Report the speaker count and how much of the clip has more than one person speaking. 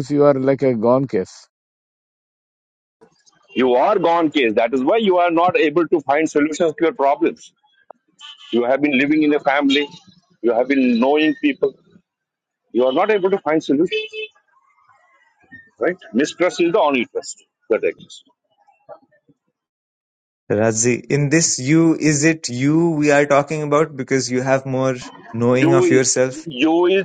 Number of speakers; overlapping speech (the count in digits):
3, about 3%